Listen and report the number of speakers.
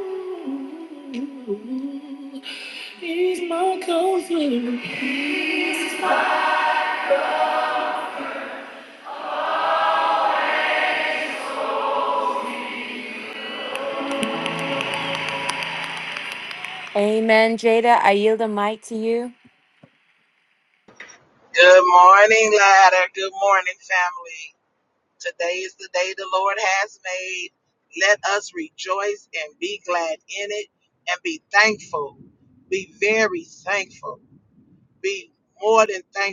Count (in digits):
2